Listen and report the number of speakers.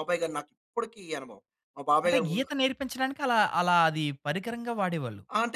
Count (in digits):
2